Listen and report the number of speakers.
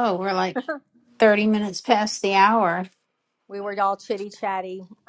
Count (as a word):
two